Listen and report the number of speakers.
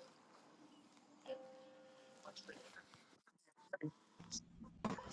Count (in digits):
0